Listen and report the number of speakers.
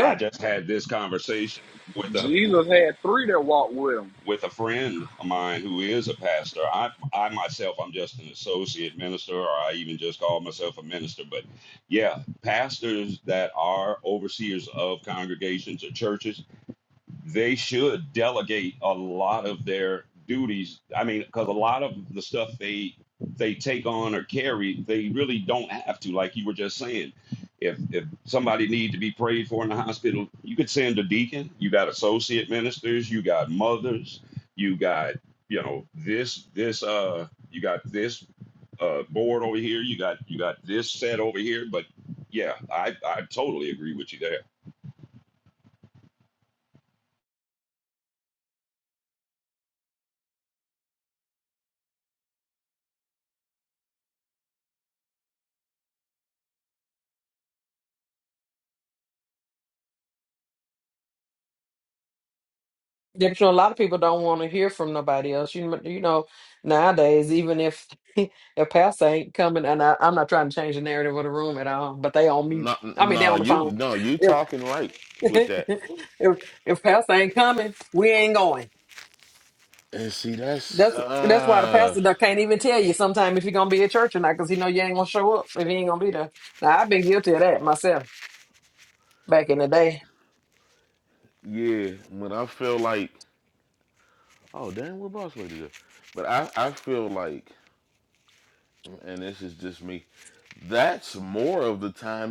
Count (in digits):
4